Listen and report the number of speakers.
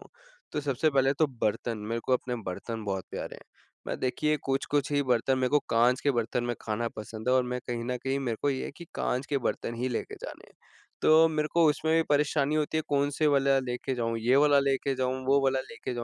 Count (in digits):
1